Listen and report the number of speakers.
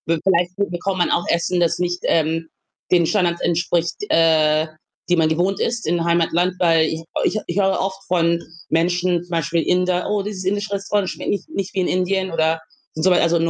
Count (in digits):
1